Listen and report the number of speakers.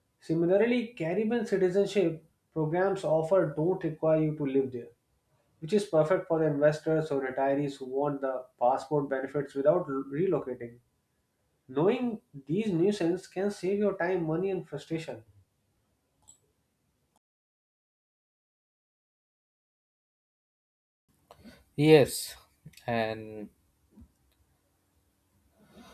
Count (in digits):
2